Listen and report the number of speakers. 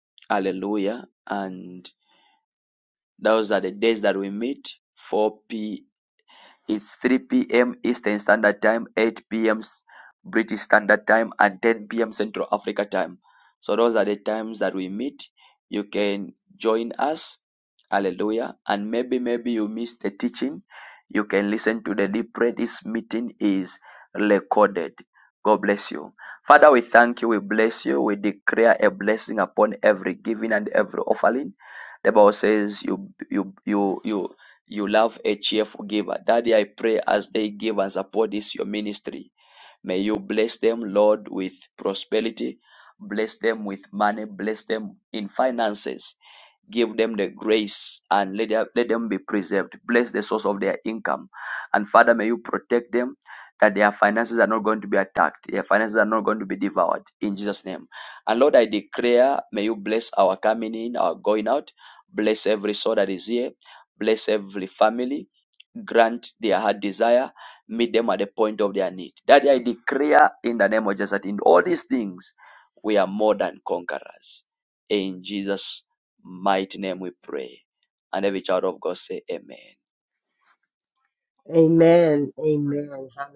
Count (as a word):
two